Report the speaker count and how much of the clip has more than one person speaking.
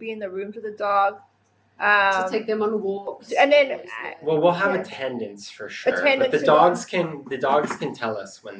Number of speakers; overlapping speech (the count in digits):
3, about 29%